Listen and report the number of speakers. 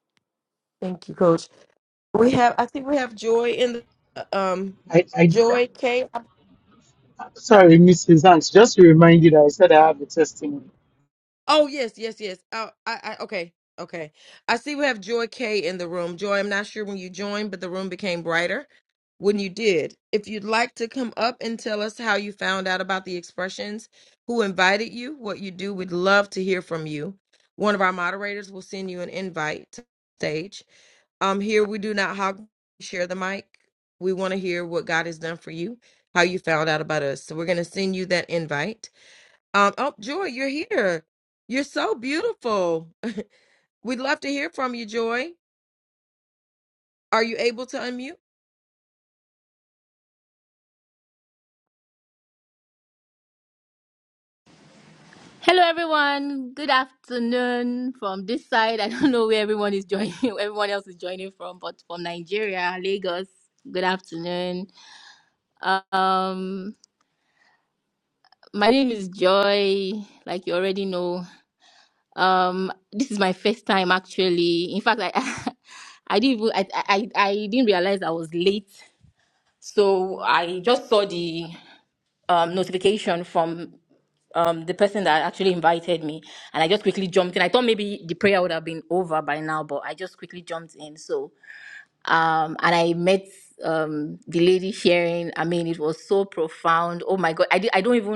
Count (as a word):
three